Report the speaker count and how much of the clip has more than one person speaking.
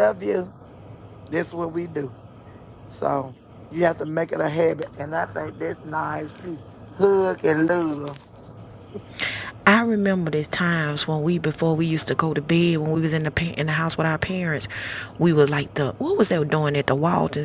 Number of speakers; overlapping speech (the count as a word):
two, no overlap